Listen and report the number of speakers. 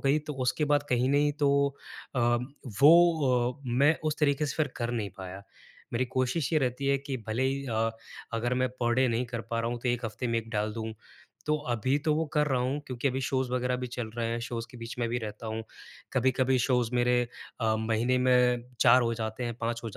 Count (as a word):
one